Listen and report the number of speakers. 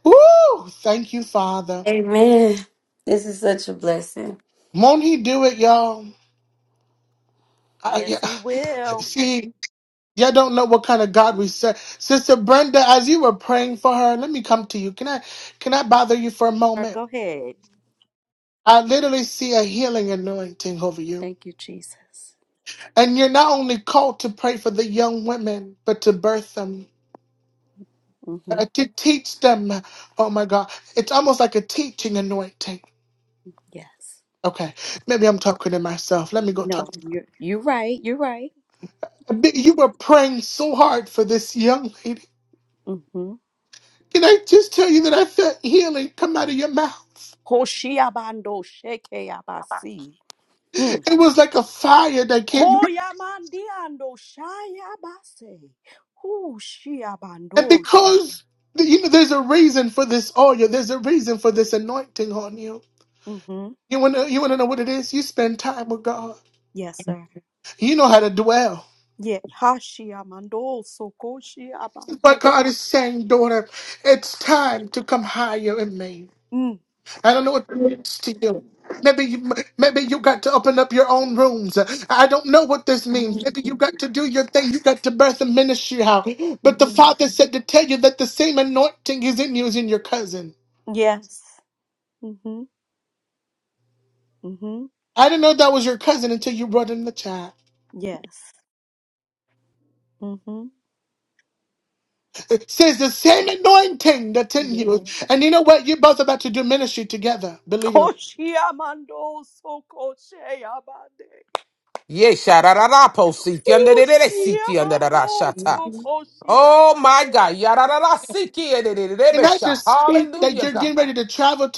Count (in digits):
4